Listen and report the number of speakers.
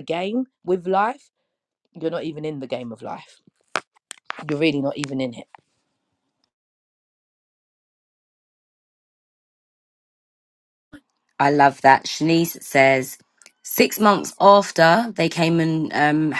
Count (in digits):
2